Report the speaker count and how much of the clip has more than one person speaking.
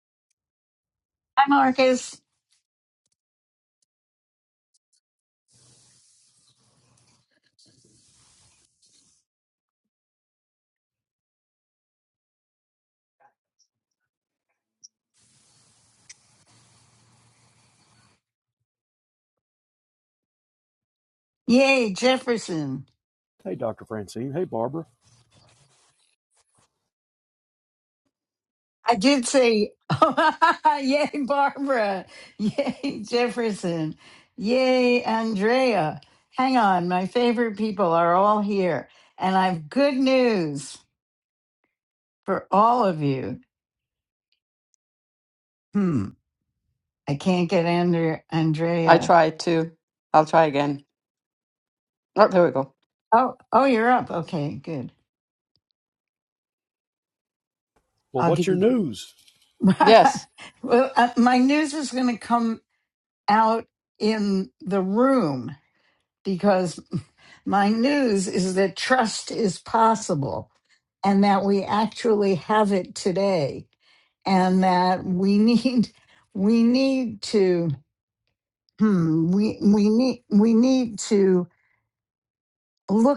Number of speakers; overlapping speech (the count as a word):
three, about 1%